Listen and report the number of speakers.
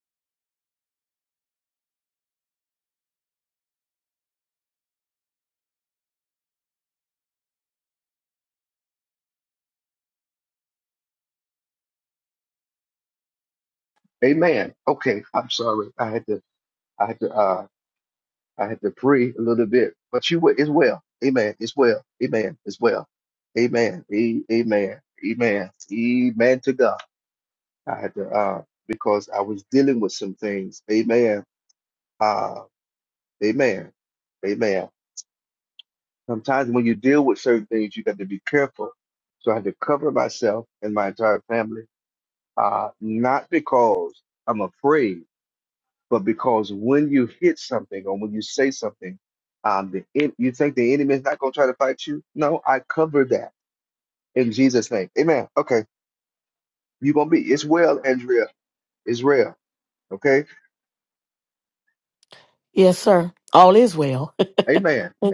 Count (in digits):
2